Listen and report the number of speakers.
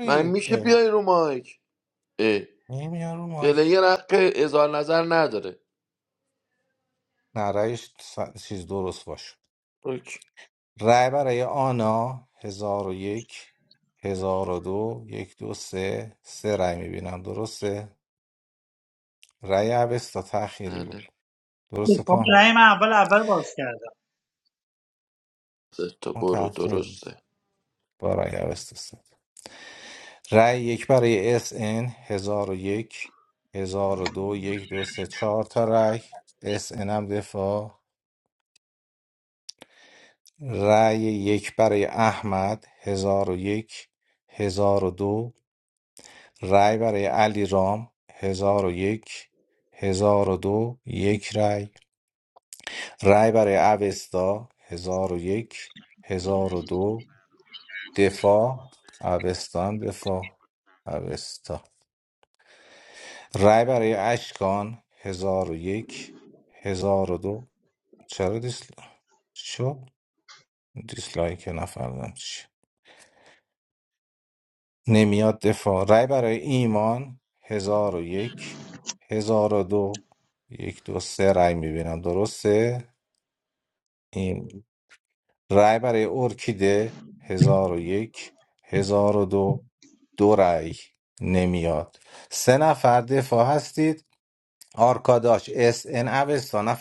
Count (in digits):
3